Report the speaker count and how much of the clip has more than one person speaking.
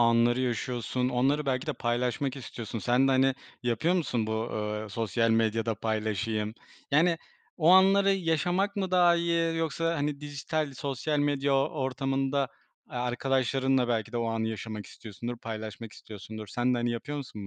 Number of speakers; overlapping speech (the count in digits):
1, no overlap